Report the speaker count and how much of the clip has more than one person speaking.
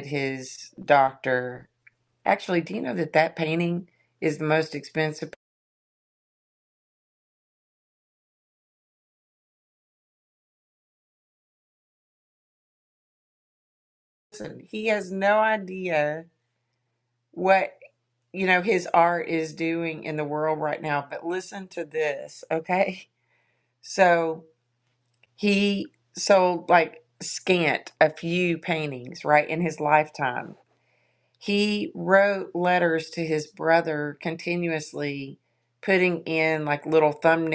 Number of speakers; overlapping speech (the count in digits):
1, no overlap